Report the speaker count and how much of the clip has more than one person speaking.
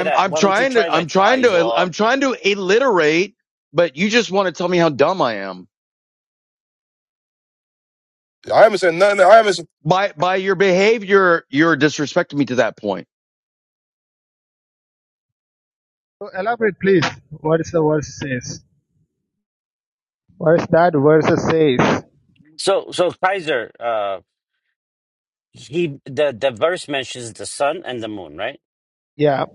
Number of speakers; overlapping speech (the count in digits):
4, about 6%